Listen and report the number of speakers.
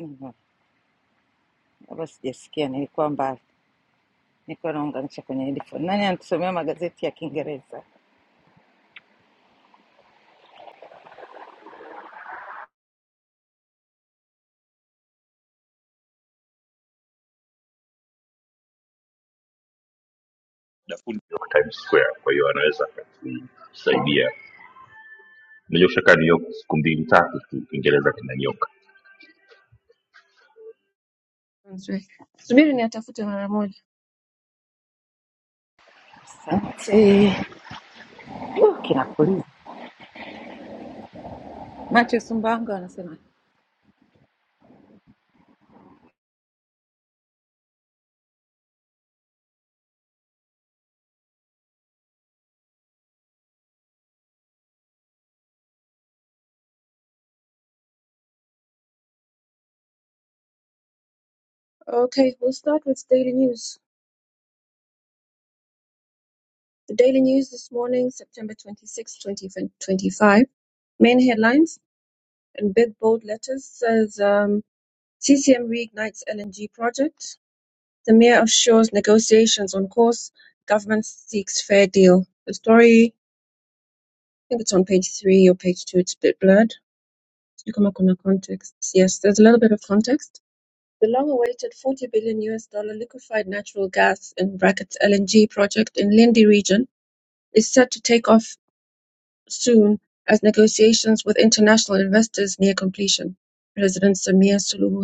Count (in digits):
3